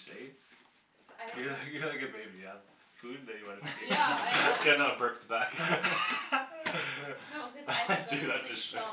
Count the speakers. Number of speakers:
3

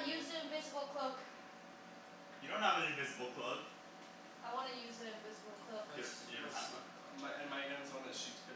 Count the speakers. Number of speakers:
3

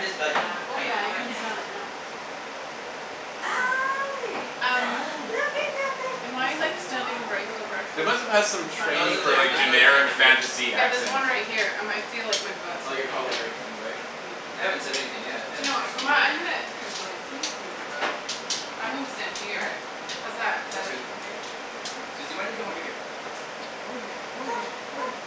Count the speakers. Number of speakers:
4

